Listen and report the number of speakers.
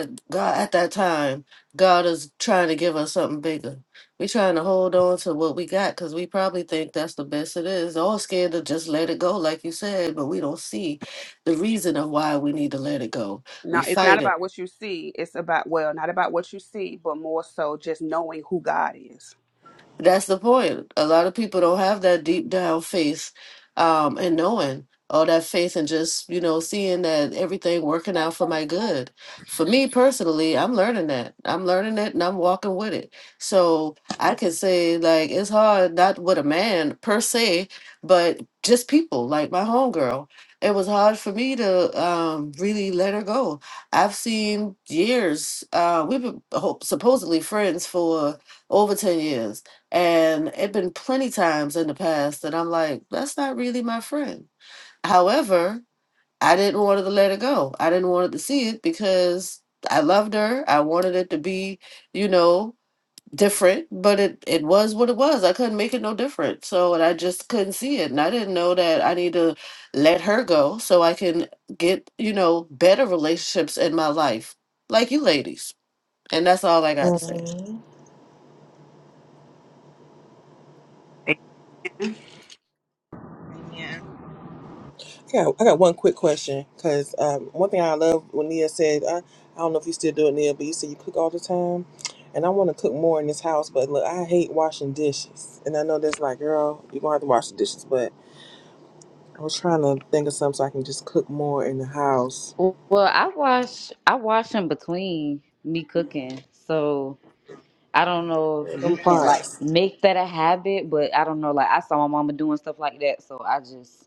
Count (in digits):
4